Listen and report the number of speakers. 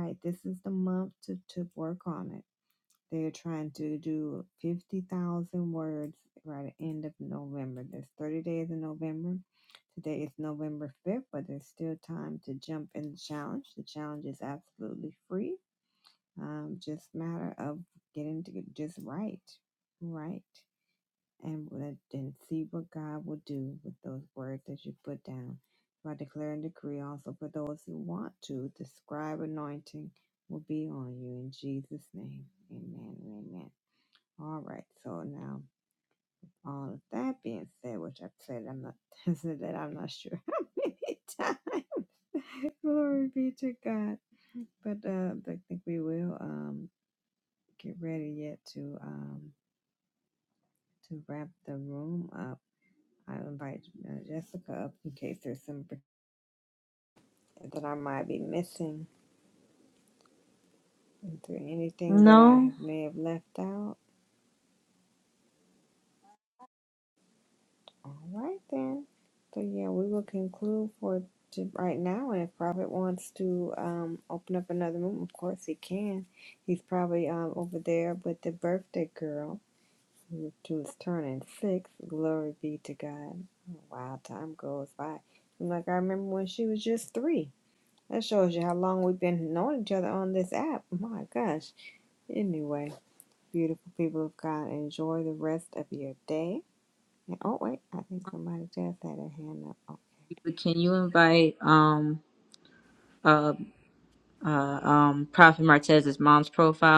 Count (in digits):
2